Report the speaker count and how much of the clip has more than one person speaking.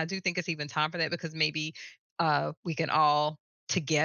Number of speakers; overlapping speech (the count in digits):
1, no overlap